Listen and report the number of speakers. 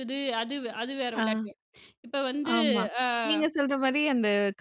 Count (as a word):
two